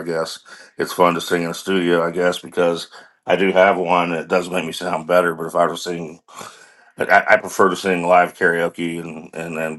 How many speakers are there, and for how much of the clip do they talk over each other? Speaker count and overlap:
1, no overlap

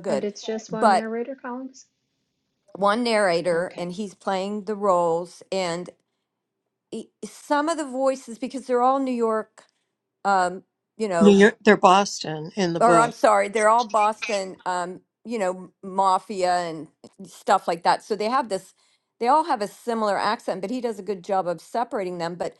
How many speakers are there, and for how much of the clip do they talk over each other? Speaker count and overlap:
3, about 6%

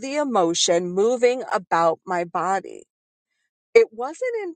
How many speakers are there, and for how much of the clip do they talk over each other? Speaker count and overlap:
1, no overlap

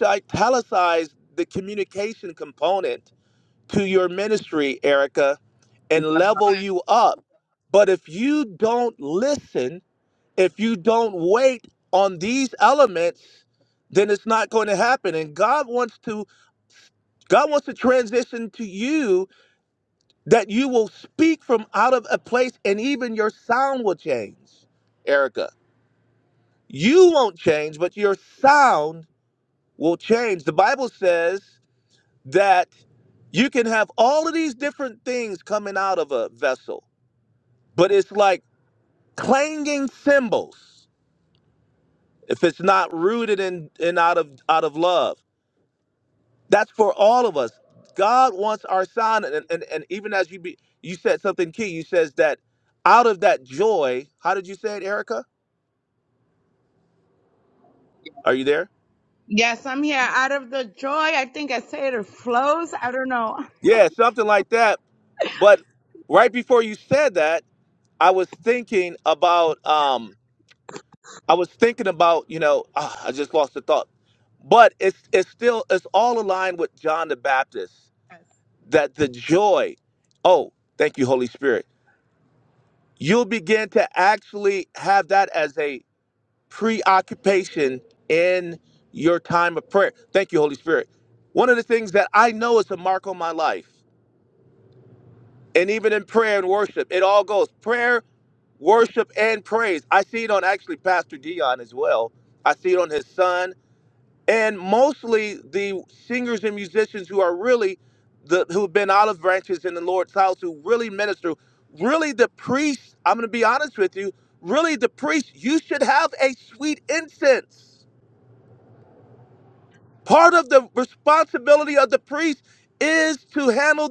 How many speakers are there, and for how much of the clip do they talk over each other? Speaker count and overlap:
2, no overlap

